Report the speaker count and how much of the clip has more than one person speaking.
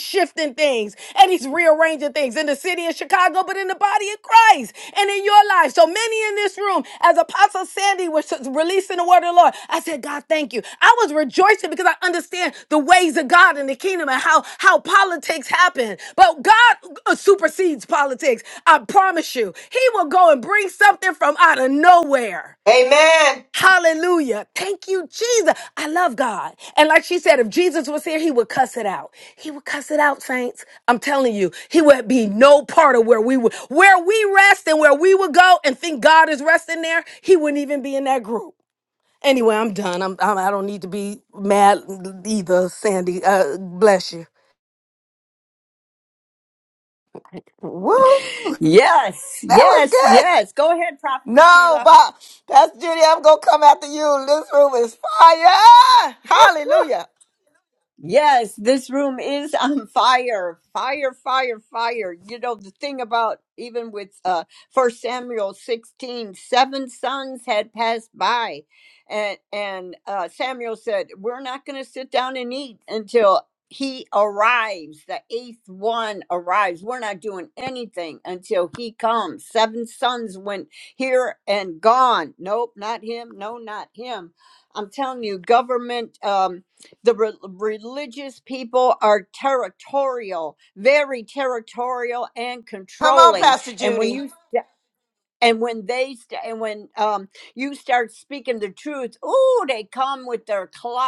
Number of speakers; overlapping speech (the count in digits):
3, about 2%